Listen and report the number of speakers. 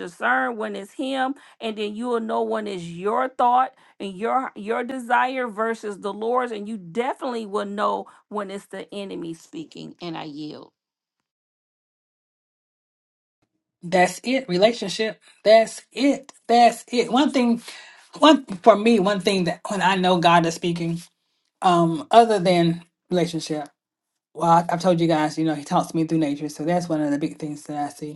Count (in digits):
2